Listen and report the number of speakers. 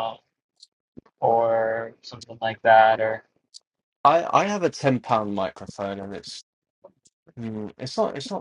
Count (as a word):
two